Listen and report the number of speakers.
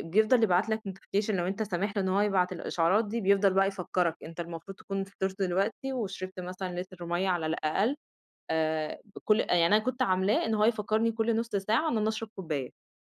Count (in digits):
1